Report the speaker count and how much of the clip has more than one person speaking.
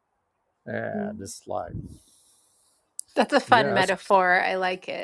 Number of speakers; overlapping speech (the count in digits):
2, about 8%